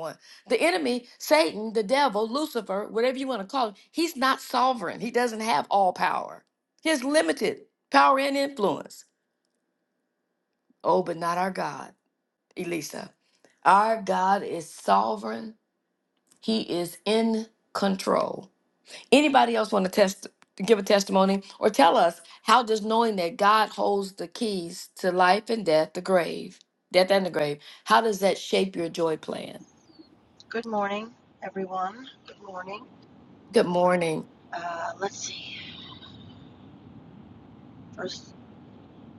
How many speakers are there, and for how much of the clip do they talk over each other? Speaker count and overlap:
2, no overlap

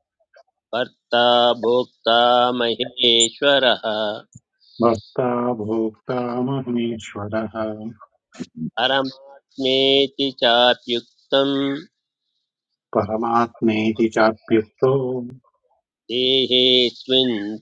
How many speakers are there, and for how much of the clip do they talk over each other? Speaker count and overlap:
2, no overlap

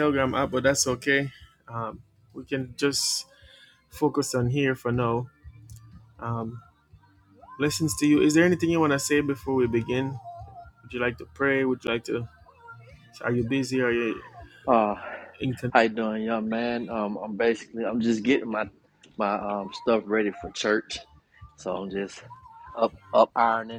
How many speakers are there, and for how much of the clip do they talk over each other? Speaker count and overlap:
2, no overlap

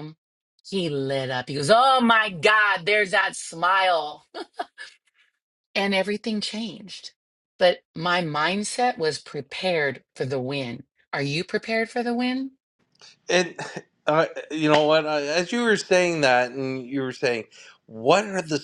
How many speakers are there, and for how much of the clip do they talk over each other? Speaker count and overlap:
2, no overlap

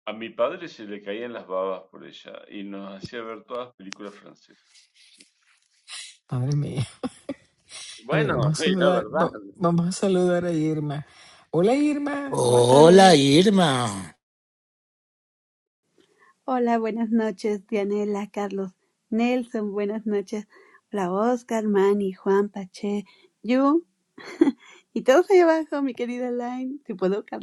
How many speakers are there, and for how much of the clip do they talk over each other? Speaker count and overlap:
4, about 7%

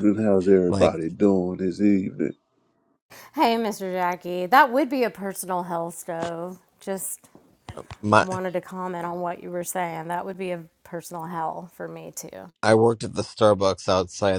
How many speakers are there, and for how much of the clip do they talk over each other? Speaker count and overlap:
3, about 2%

